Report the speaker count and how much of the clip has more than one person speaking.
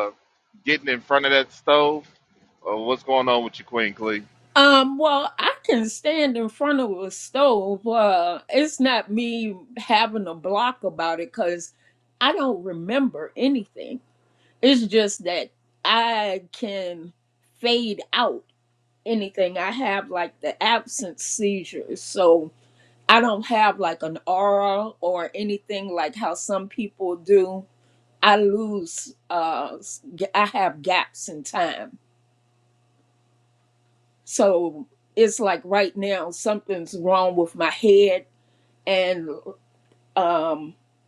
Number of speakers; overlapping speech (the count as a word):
two, no overlap